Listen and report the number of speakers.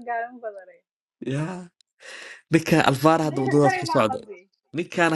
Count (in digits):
2